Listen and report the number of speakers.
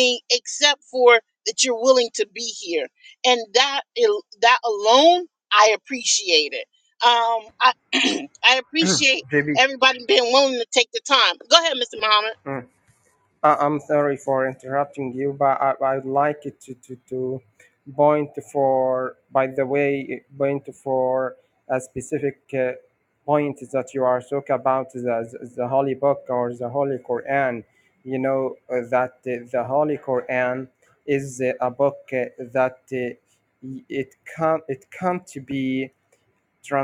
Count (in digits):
2